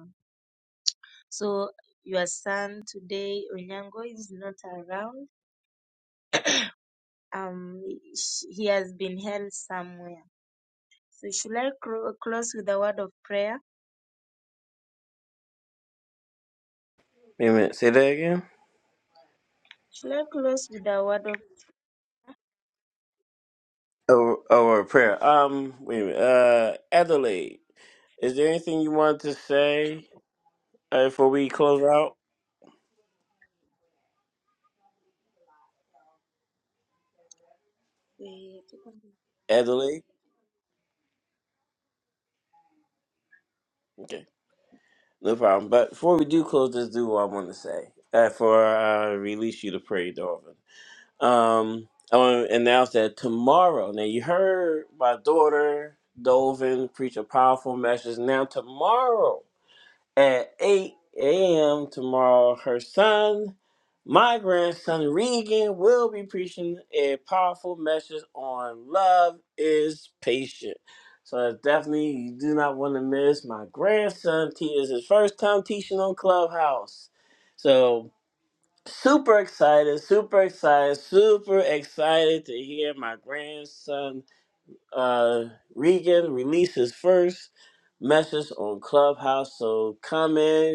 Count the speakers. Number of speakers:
two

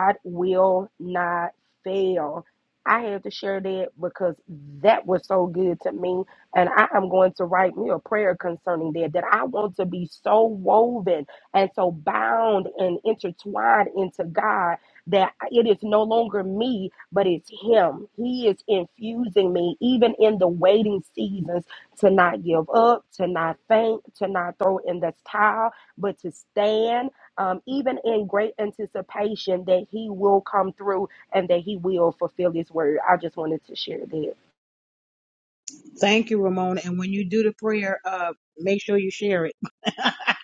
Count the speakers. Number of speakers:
two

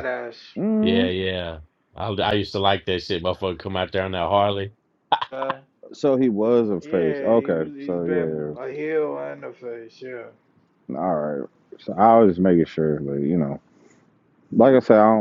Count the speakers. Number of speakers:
three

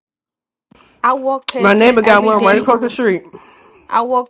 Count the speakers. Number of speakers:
two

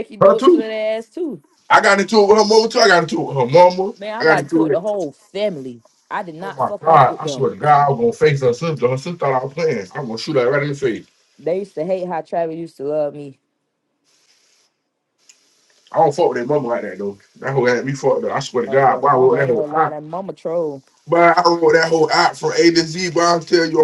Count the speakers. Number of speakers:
two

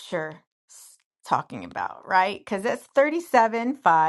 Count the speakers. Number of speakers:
one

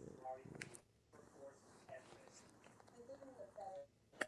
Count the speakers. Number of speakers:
zero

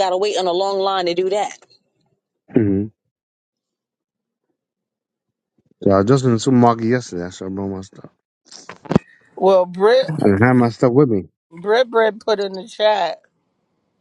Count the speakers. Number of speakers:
three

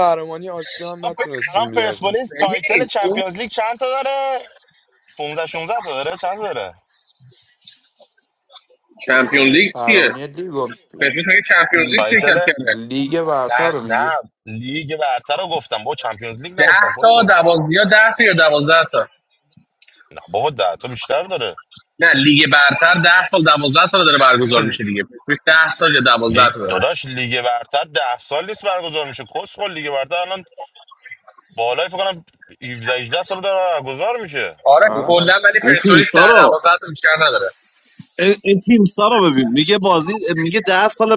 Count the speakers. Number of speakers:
five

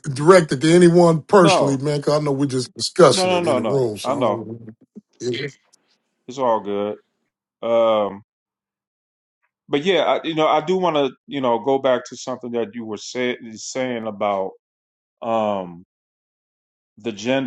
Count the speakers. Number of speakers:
two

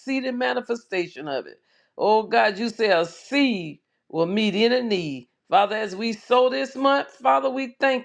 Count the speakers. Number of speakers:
one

